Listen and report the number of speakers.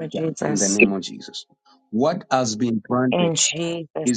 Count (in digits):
2